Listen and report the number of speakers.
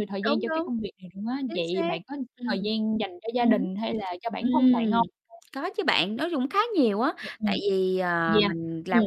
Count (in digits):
2